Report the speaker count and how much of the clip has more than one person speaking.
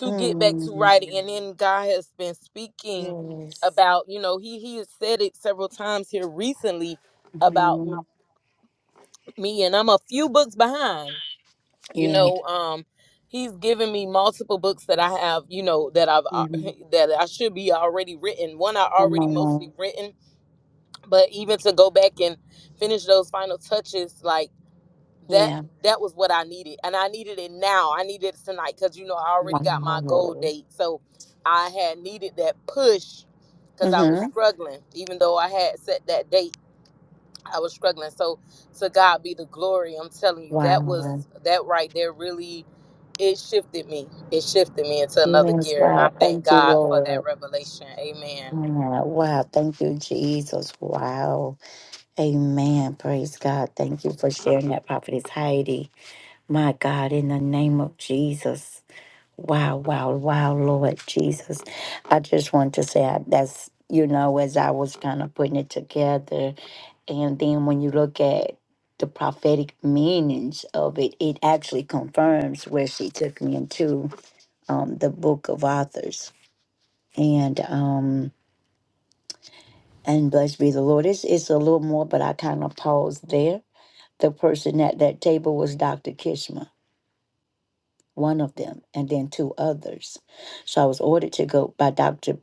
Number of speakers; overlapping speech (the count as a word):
two, about 7%